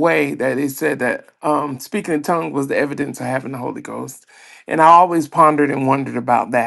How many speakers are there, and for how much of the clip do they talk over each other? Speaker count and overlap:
1, no overlap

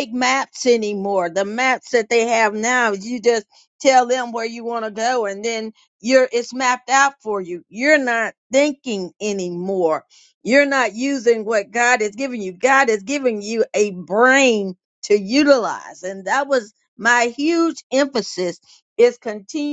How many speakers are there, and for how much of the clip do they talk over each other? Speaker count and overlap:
1, no overlap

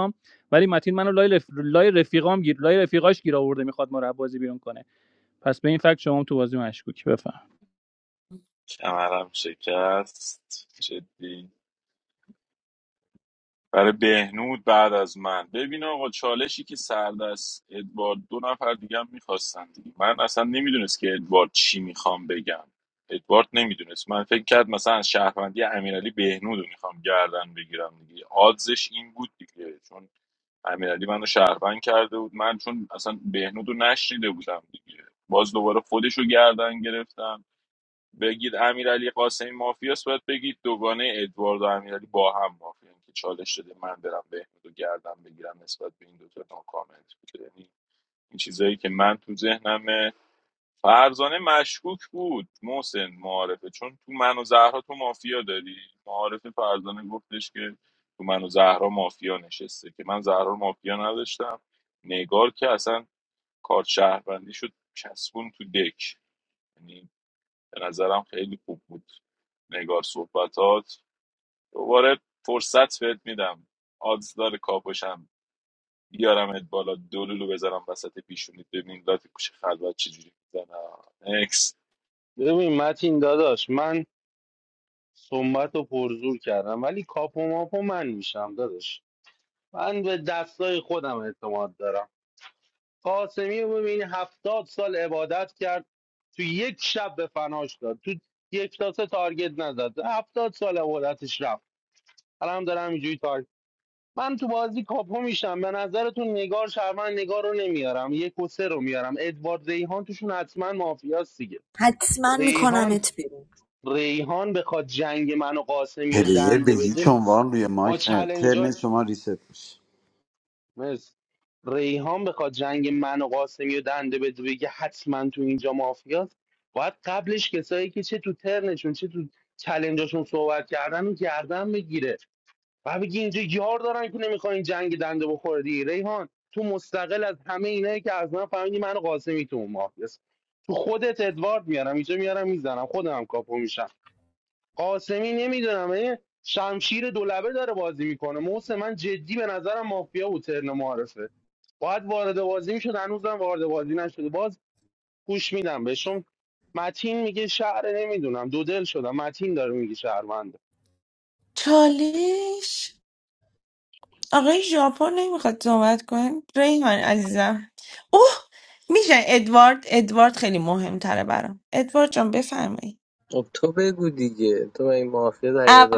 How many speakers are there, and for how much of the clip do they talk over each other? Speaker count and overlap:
7, about 2%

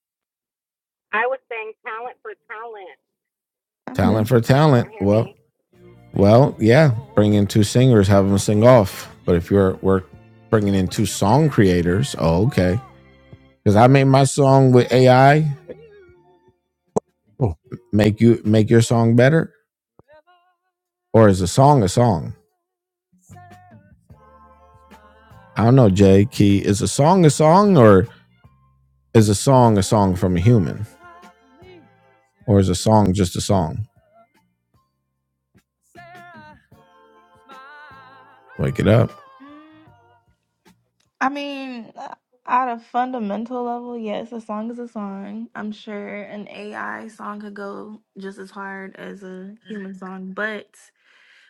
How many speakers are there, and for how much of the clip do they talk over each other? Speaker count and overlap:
3, about 2%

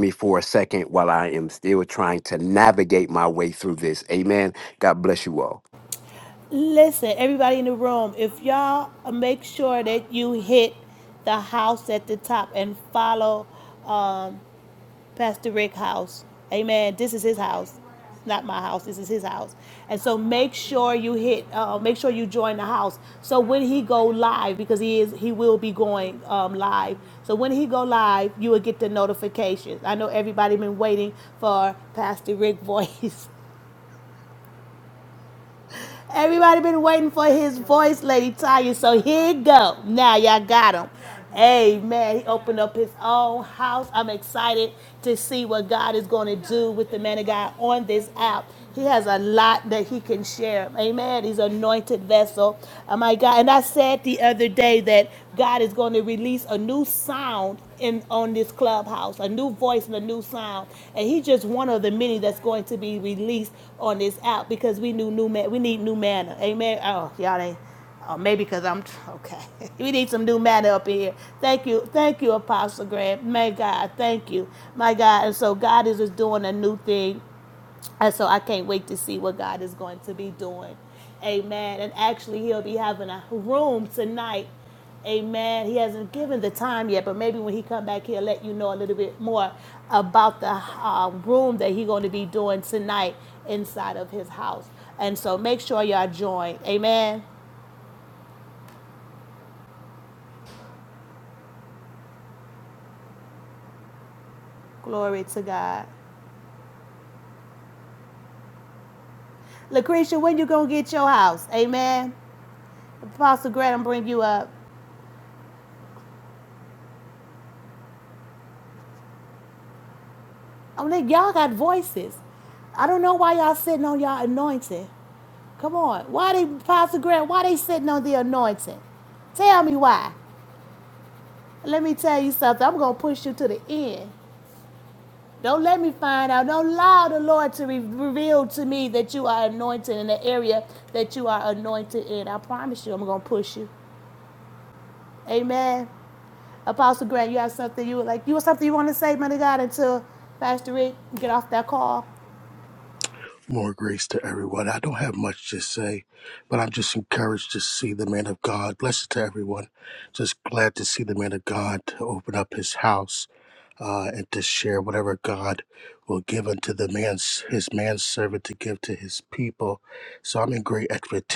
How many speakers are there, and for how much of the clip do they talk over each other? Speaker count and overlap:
3, no overlap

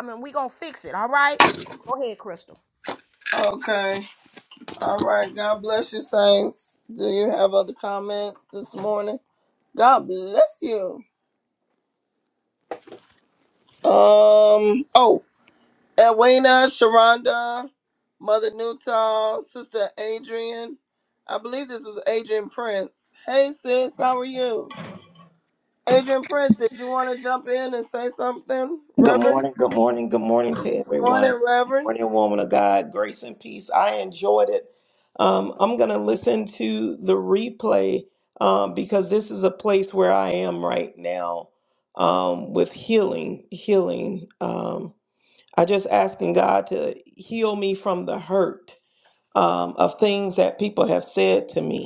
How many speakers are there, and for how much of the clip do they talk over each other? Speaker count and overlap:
3, about 2%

